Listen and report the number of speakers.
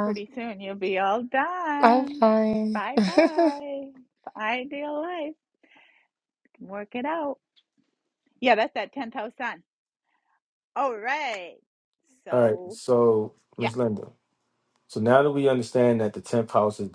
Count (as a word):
three